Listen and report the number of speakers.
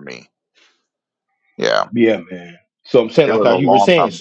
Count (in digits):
2